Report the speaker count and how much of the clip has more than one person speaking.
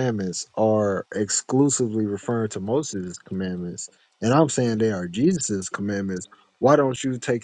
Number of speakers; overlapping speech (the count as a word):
one, no overlap